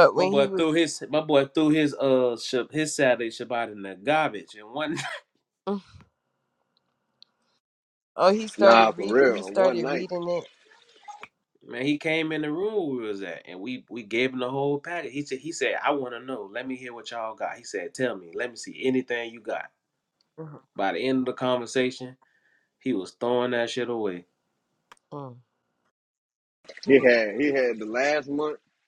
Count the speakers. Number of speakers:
3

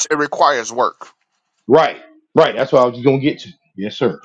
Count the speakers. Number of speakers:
2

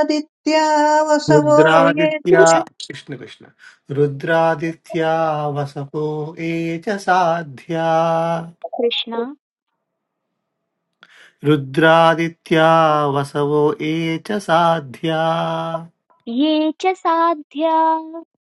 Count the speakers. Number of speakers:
3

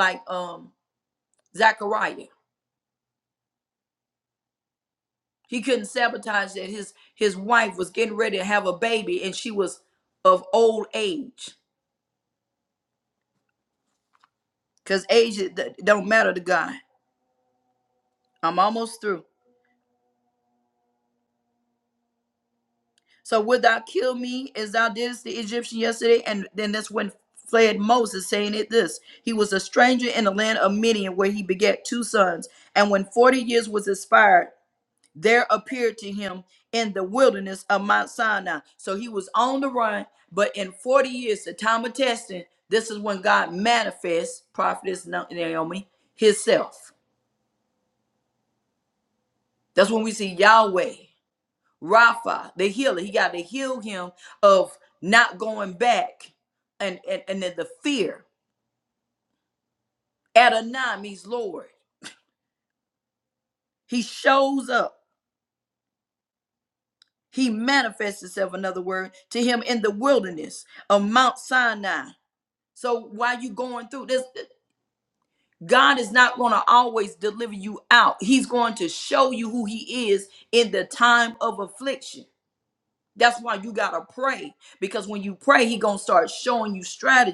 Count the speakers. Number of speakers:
1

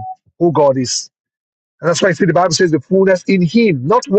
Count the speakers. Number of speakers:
1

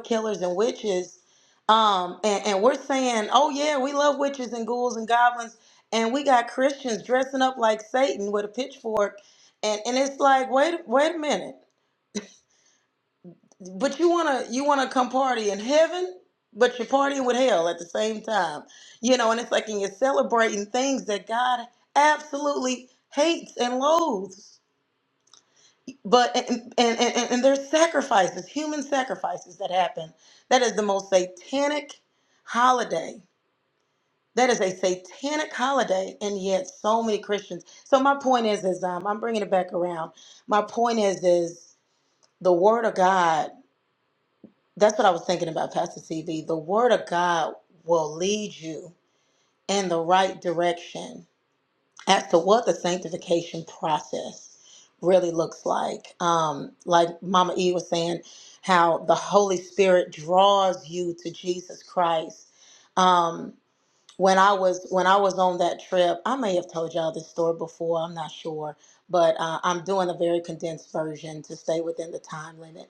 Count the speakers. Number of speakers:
1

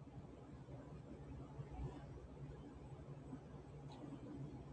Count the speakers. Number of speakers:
0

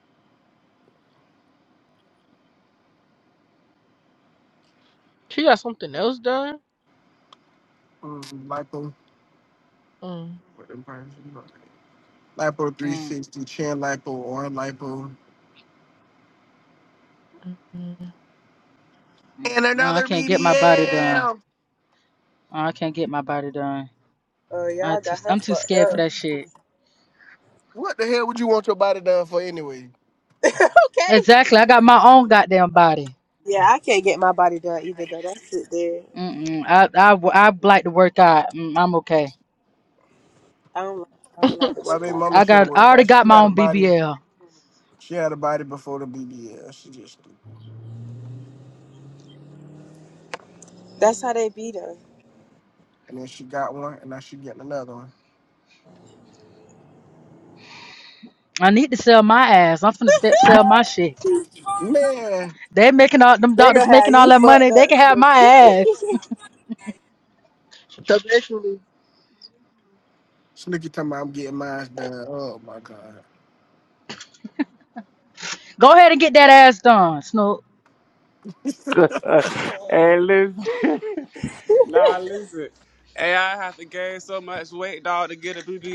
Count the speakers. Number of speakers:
5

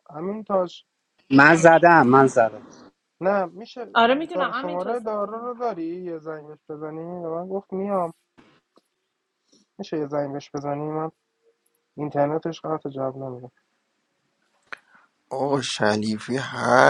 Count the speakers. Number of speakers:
4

